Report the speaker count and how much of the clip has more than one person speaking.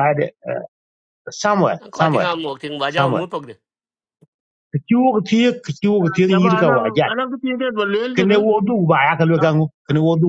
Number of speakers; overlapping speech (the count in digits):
3, about 15%